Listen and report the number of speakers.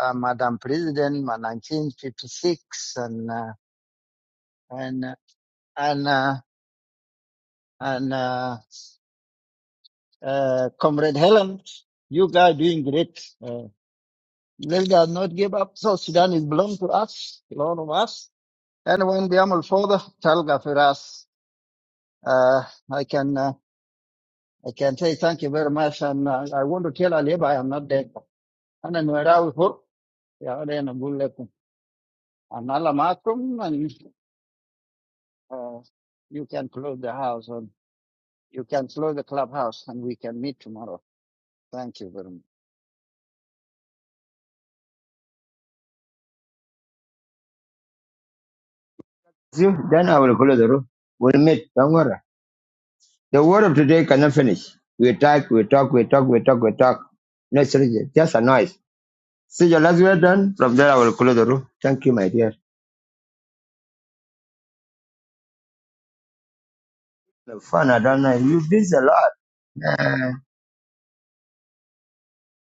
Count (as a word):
two